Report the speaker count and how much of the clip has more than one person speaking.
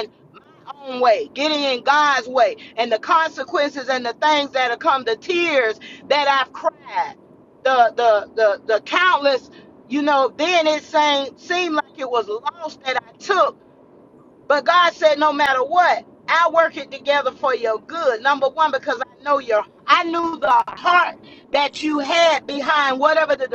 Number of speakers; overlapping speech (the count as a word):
one, no overlap